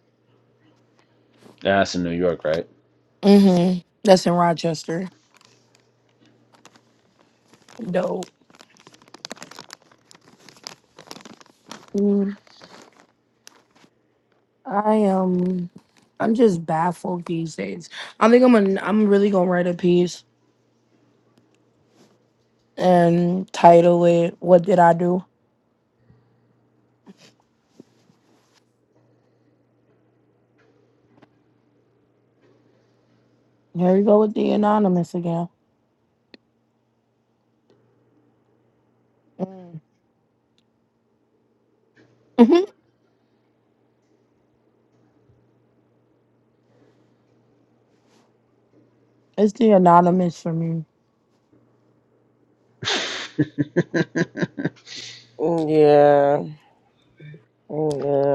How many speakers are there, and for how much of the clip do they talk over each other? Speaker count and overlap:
three, no overlap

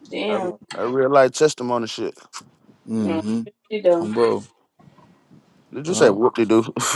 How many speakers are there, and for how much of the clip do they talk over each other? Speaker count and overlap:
three, about 12%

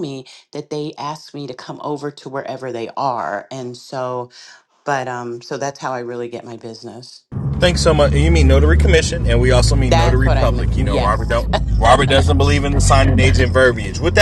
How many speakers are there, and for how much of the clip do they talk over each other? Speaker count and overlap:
two, about 9%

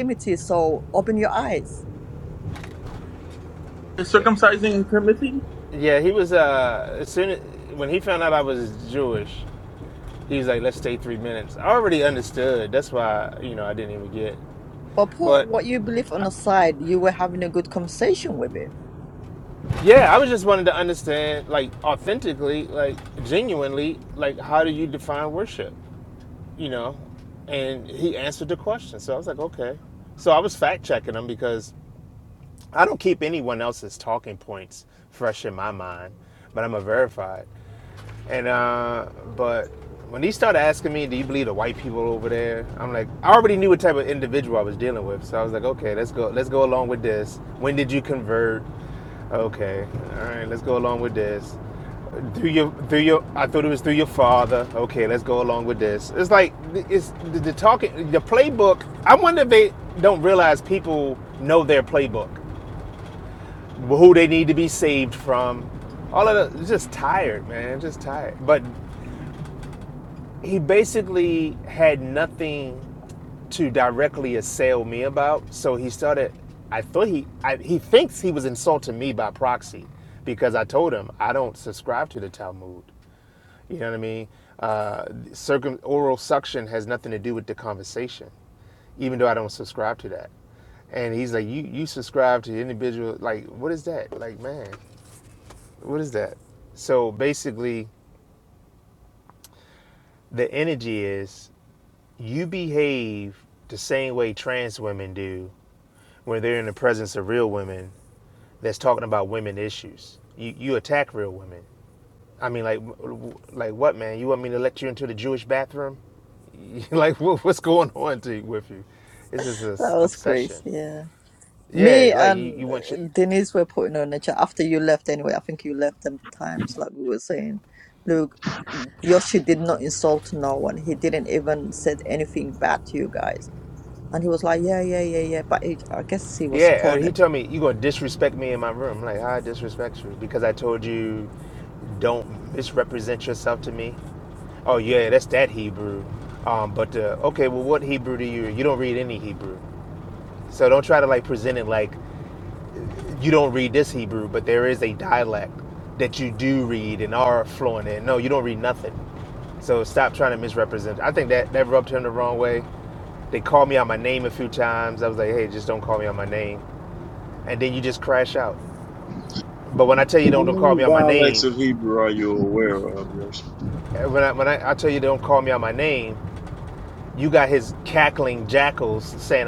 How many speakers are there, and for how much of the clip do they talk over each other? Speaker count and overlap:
four, about 2%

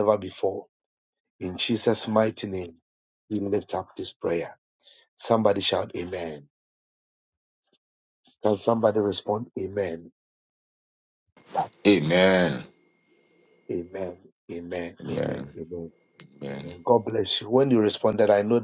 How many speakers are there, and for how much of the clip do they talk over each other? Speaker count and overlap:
two, about 3%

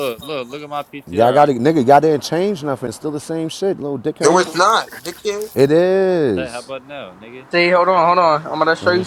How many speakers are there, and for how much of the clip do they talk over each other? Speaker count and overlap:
four, about 12%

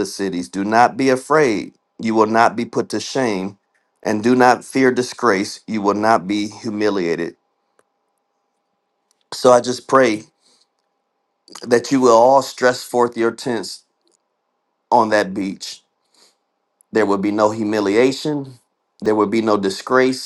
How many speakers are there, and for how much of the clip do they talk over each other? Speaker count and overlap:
one, no overlap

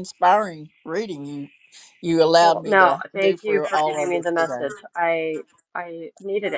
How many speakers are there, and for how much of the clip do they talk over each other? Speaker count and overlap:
two, about 37%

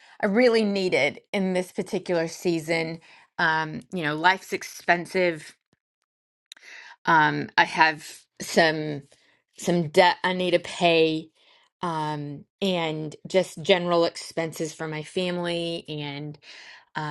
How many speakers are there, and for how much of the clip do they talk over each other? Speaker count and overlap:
one, no overlap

